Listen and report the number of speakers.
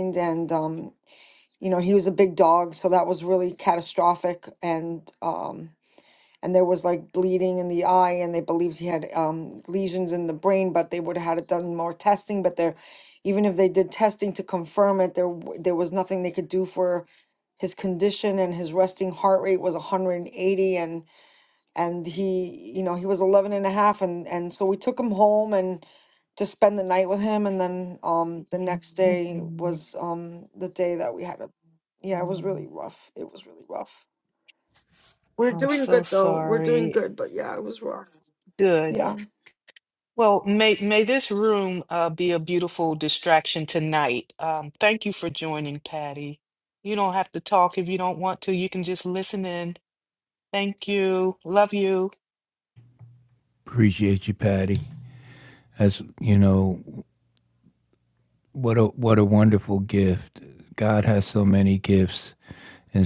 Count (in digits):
3